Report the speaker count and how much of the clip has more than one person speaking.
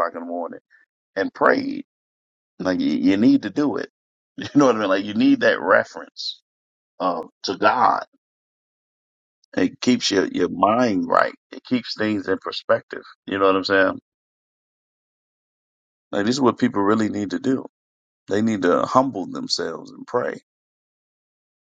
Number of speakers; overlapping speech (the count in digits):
1, no overlap